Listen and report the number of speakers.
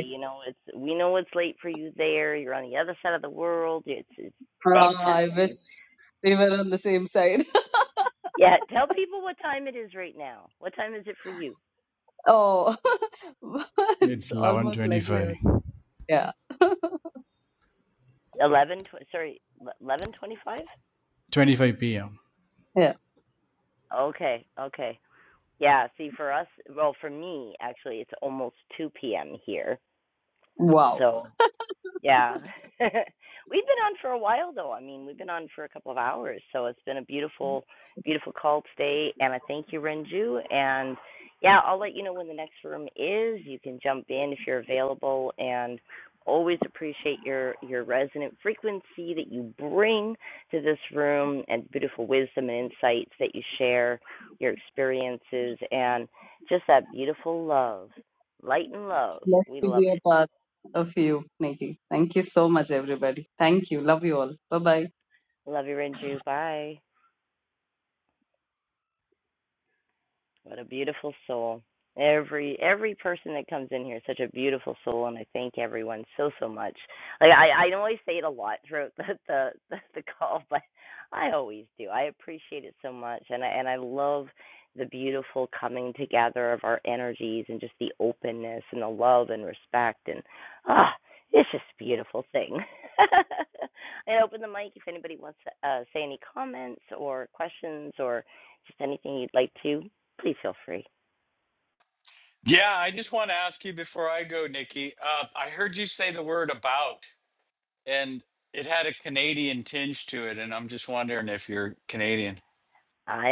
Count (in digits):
4